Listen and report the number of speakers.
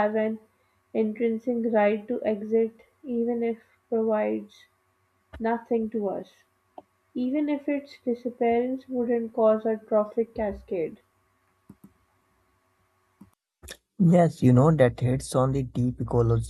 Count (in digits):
2